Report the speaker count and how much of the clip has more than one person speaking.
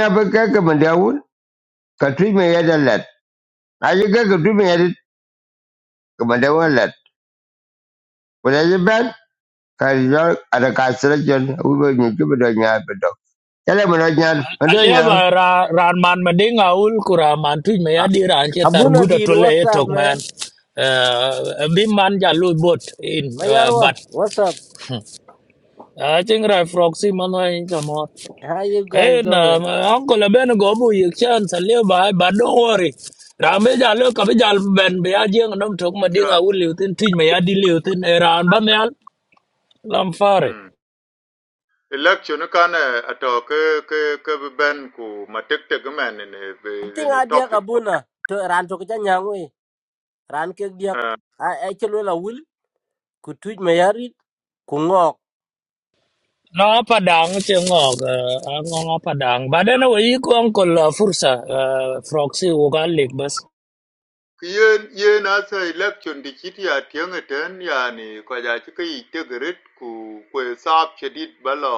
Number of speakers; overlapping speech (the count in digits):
4, about 6%